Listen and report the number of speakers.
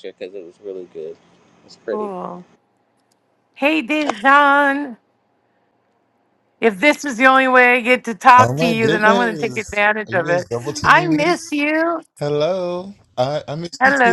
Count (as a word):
three